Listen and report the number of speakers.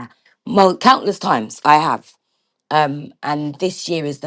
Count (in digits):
1